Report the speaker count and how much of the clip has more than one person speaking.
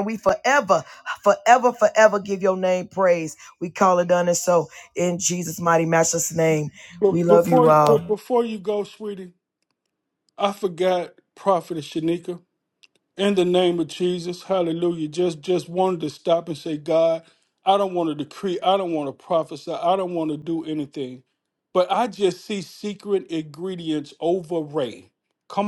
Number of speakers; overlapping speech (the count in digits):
2, about 4%